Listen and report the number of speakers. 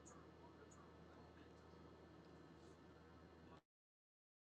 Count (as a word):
zero